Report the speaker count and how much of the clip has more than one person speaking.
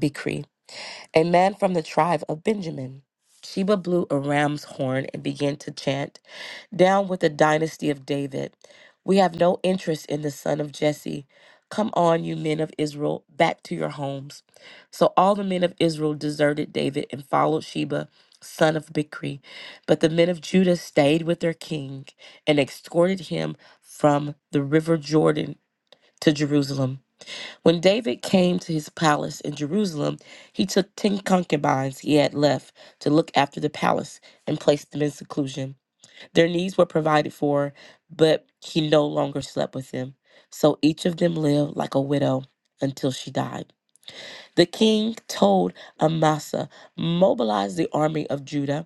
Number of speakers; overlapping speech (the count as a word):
one, no overlap